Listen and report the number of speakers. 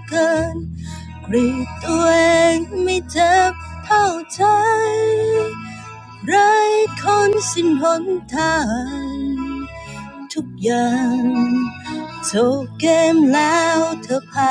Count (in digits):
1